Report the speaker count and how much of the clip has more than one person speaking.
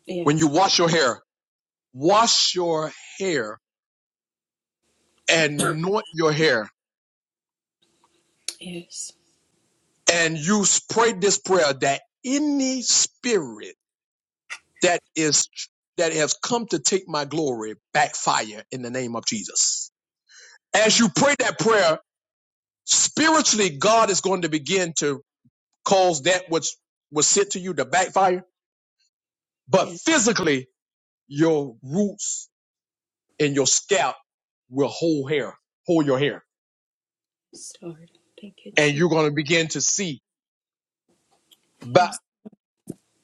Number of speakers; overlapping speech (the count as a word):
two, about 1%